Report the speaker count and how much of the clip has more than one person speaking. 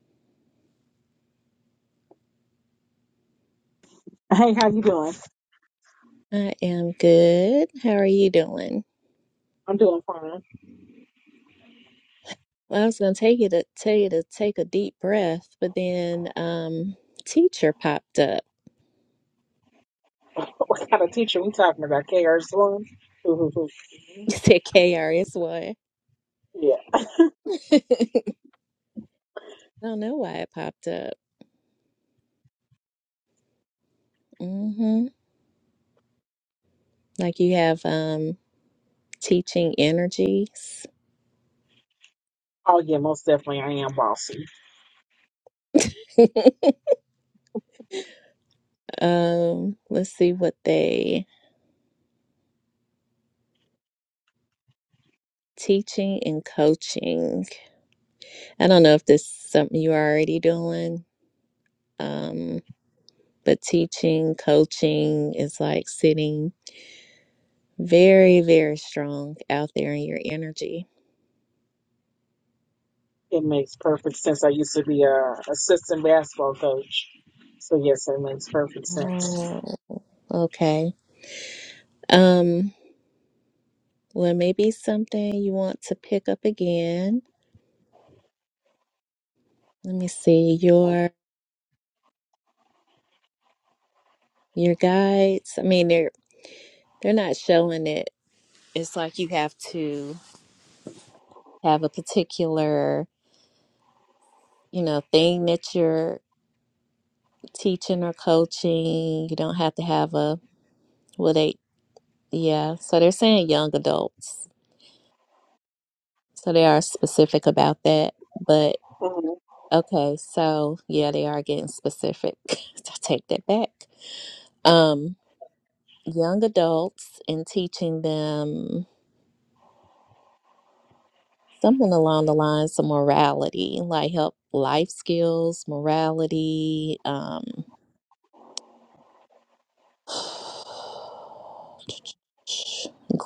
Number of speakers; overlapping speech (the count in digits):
2, under 1%